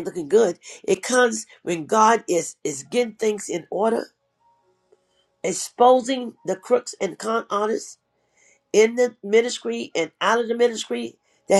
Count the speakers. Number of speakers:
1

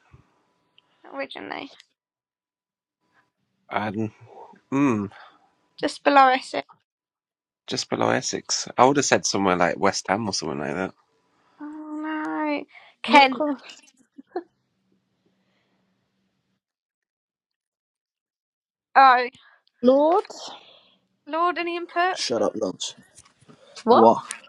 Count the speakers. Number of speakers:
4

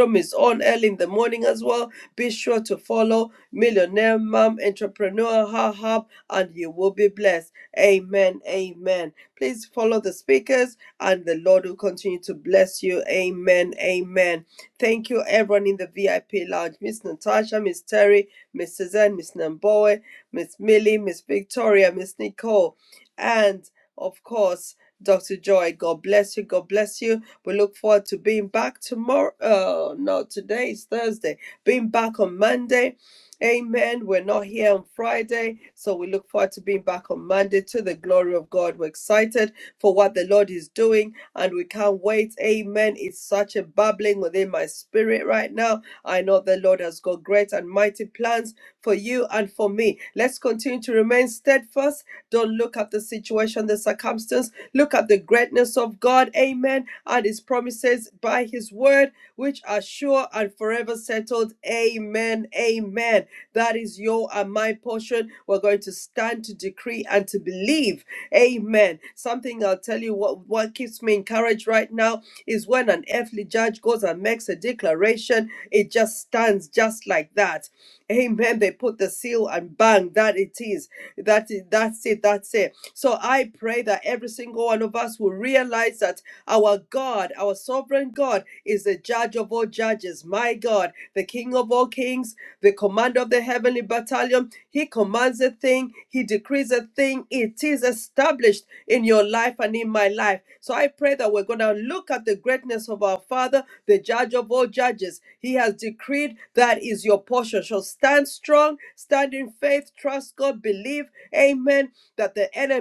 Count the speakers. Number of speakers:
1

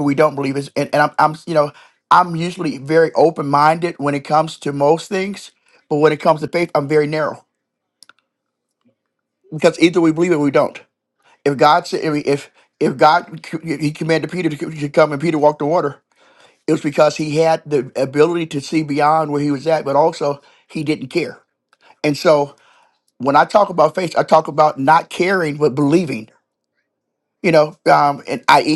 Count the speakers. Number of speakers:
1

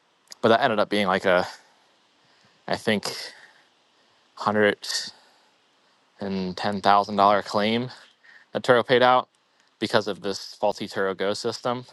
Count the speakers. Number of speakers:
1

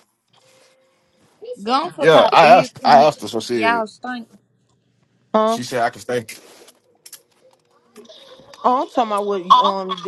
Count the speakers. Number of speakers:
3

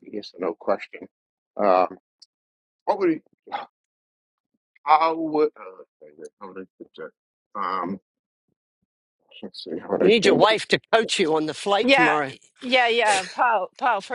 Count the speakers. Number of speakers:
3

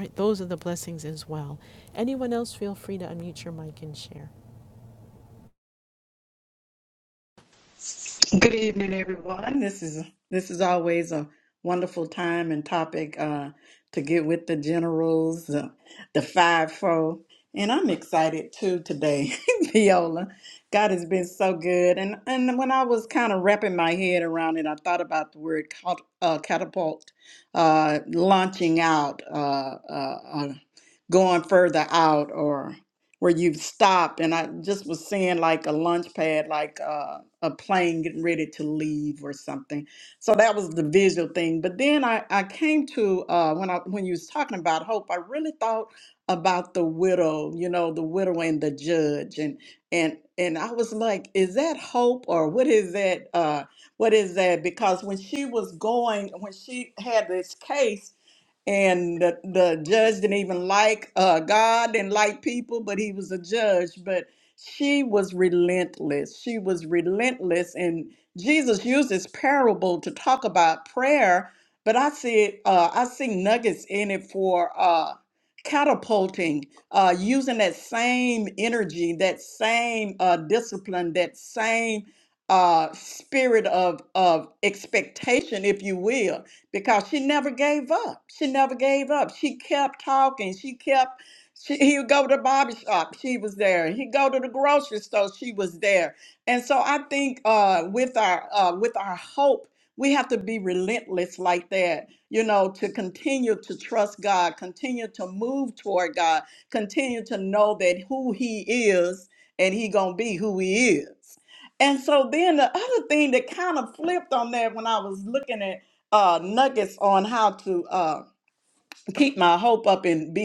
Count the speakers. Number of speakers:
2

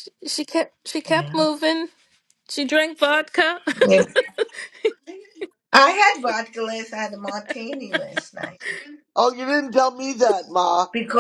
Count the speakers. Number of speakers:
3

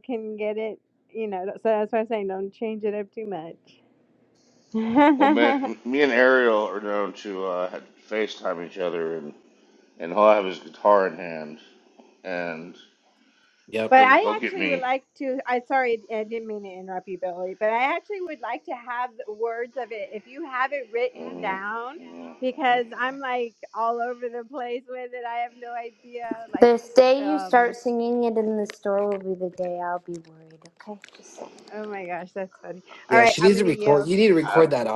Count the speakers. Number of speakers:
4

